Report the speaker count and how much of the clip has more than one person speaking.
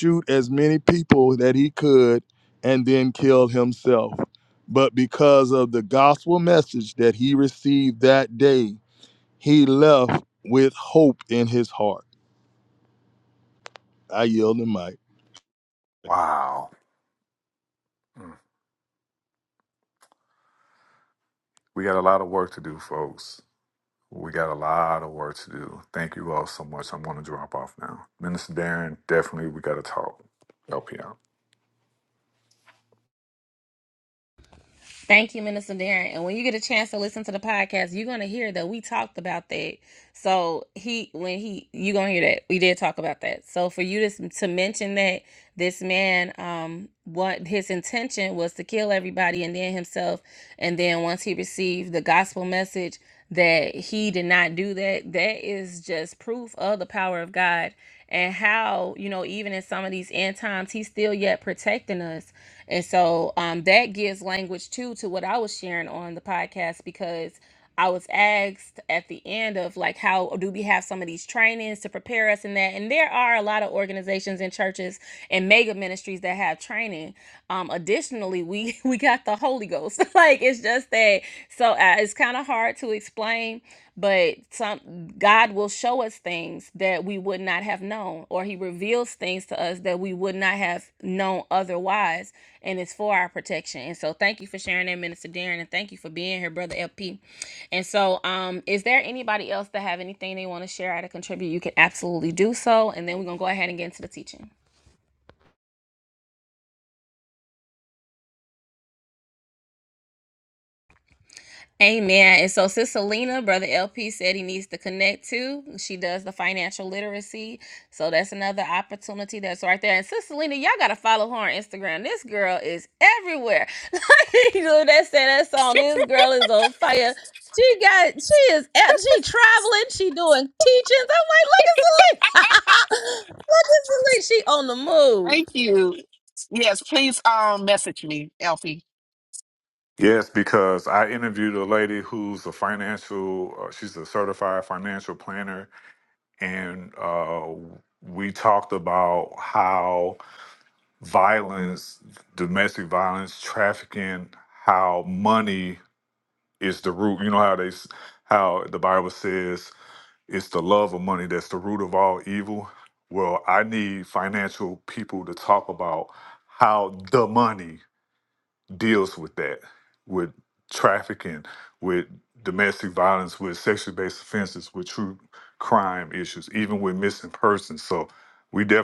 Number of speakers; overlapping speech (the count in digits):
4, under 1%